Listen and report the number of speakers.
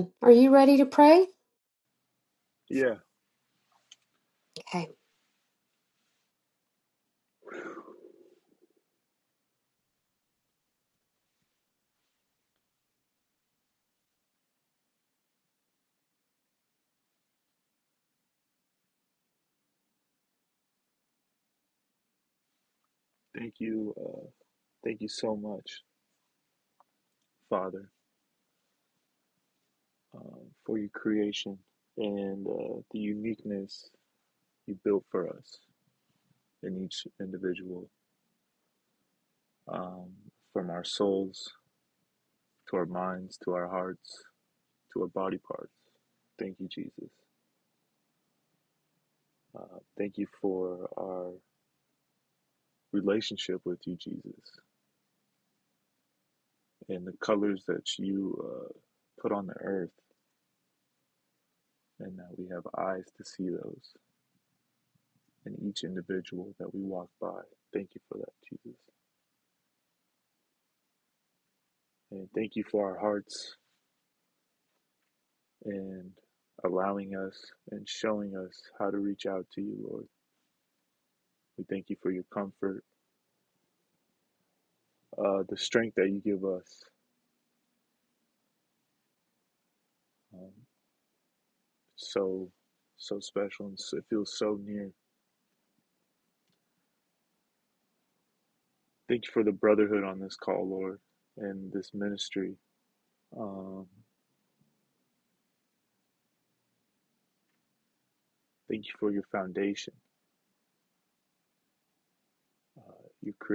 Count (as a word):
two